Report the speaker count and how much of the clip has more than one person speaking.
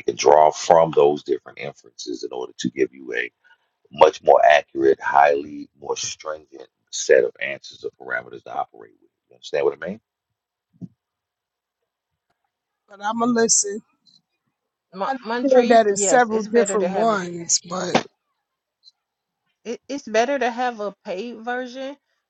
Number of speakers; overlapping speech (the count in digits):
3, about 10%